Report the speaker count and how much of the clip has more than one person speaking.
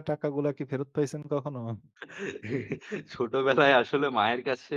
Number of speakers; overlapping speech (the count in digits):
2, no overlap